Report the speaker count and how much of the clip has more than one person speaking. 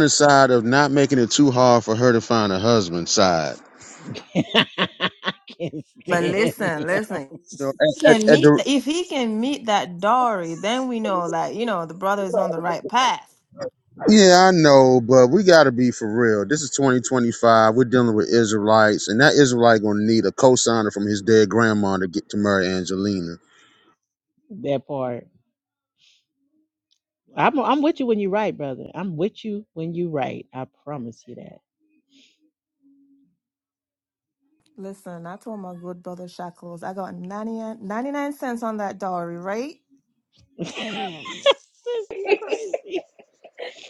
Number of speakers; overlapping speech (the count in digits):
3, about 4%